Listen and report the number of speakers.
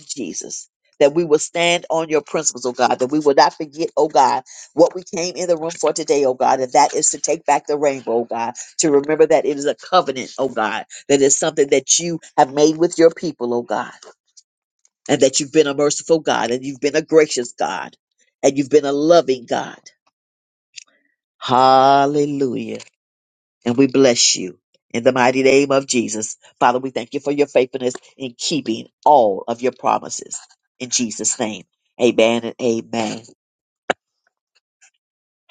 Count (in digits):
1